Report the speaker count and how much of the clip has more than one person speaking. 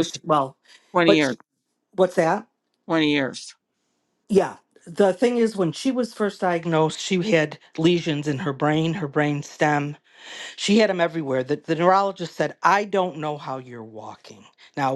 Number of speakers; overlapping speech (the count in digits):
2, about 3%